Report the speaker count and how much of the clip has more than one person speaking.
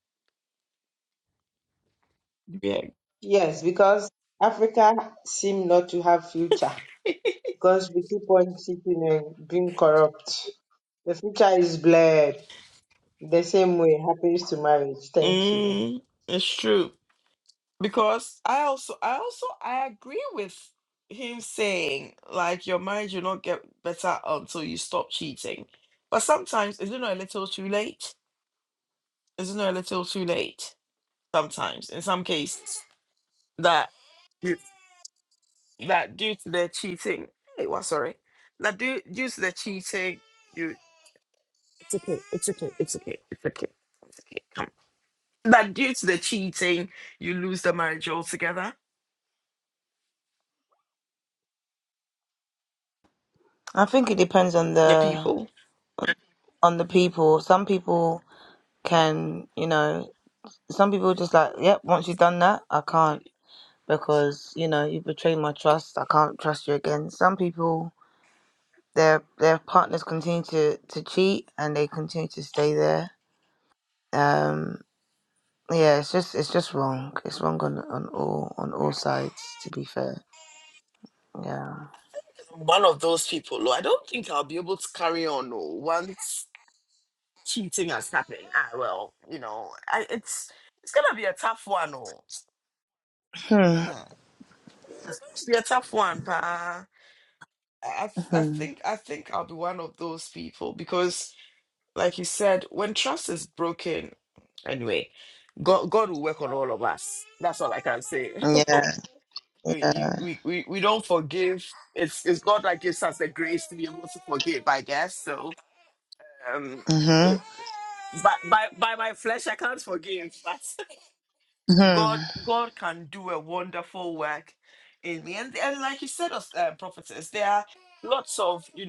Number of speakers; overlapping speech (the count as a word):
three, about 2%